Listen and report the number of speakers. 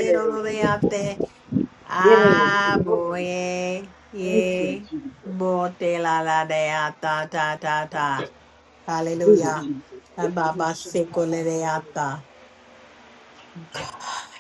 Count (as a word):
two